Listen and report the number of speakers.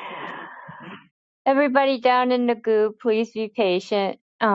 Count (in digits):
1